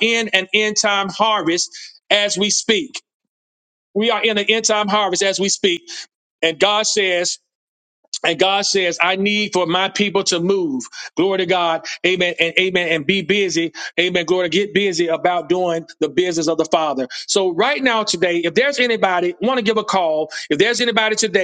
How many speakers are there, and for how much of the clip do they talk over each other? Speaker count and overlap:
1, no overlap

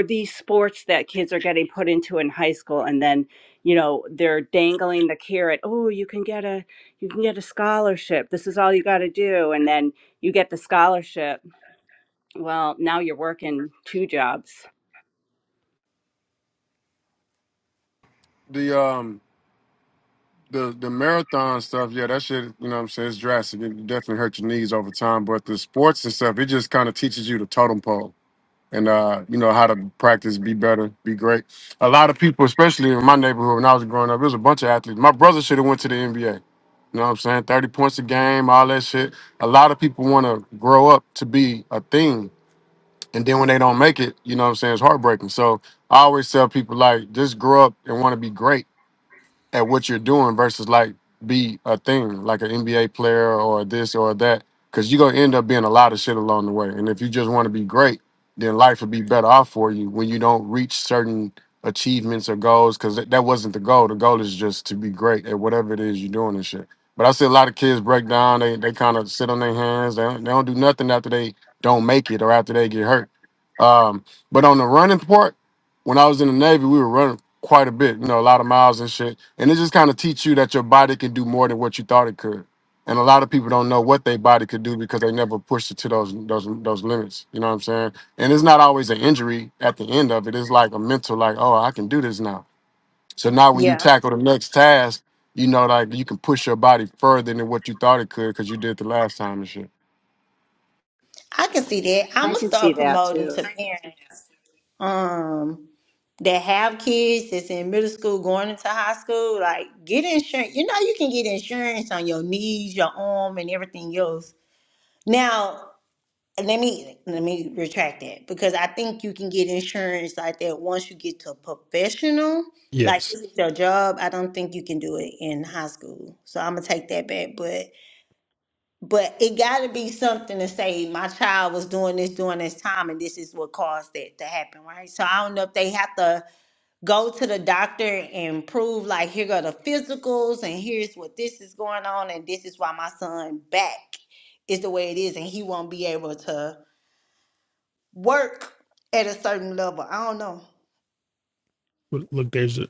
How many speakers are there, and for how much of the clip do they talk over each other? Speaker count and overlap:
4, under 1%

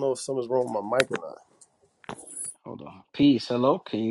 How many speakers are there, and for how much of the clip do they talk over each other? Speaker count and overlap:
2, no overlap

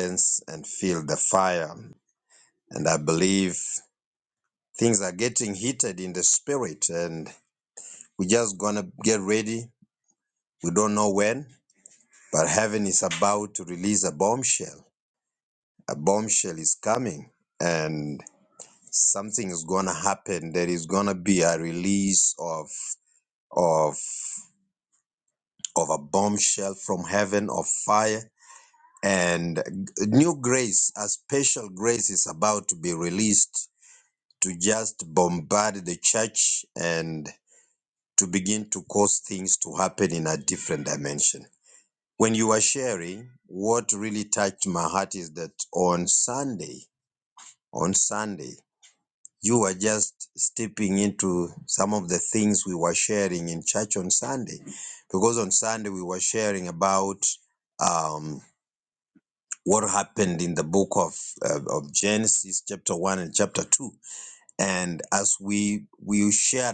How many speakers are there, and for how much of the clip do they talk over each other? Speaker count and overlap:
1, no overlap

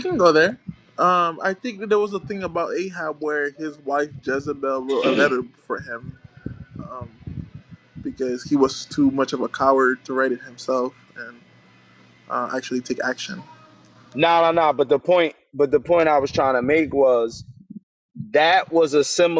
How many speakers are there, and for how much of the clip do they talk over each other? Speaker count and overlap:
2, under 1%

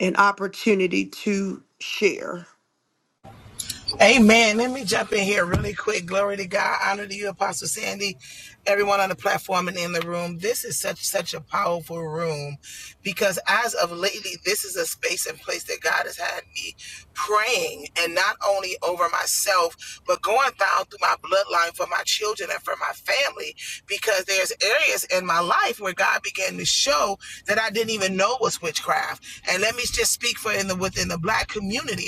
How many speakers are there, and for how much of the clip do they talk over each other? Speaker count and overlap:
2, no overlap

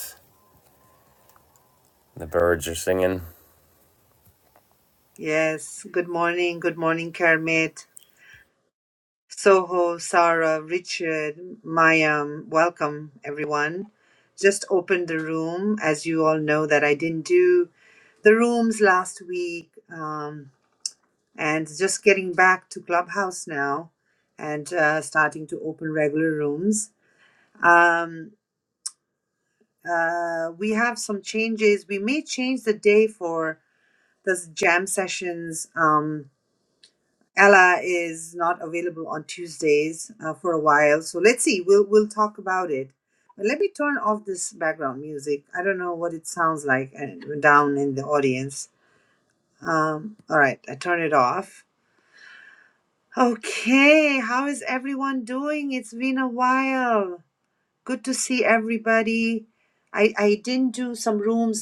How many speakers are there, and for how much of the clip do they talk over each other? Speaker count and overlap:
2, no overlap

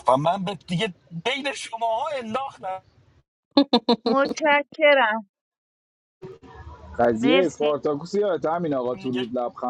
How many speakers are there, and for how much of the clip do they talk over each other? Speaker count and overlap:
3, about 9%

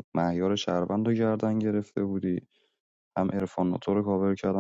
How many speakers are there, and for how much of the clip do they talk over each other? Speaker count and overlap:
1, no overlap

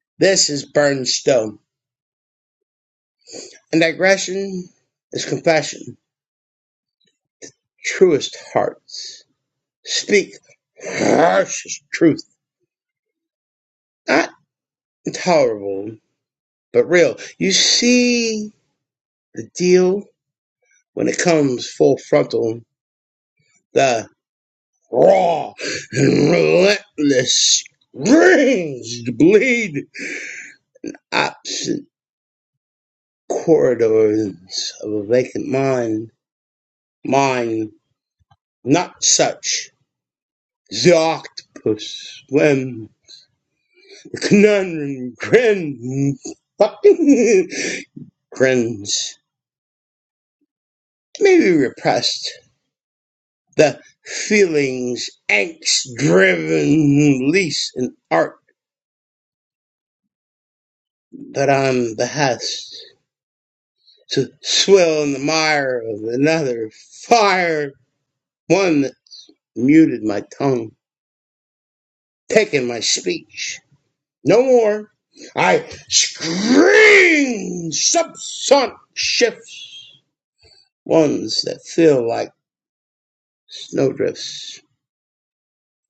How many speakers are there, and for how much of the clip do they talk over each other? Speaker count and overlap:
1, no overlap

